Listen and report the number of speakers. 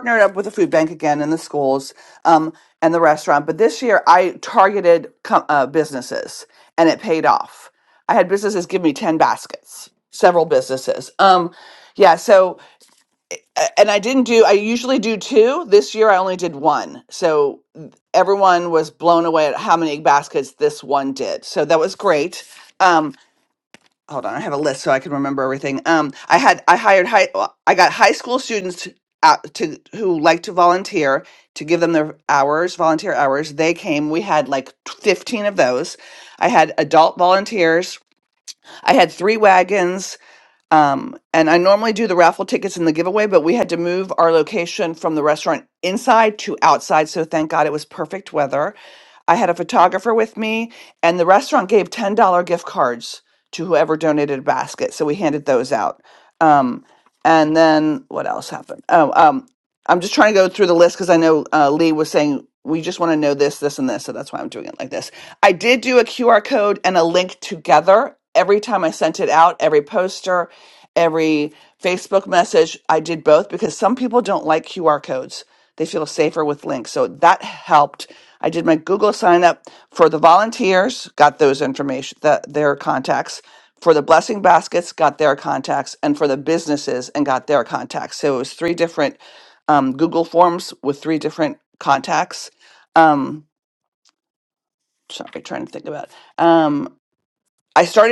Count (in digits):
1